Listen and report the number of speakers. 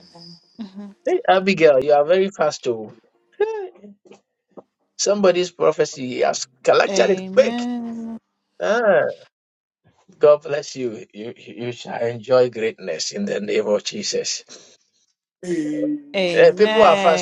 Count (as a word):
three